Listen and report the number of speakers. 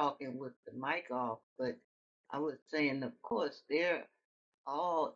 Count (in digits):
1